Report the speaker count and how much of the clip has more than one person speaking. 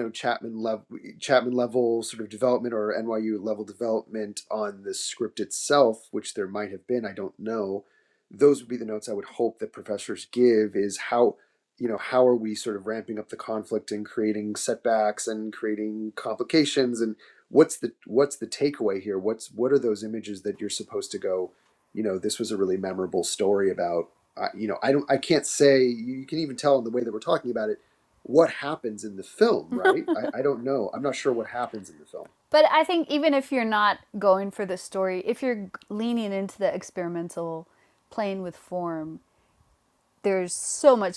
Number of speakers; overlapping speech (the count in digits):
2, no overlap